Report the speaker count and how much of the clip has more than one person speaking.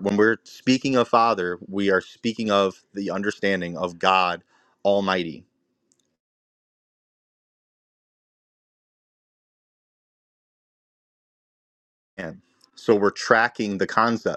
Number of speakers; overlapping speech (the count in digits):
1, no overlap